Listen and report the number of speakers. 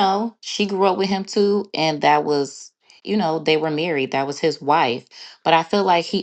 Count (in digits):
1